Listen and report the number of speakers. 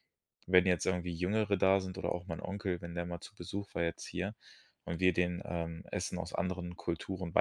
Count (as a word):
one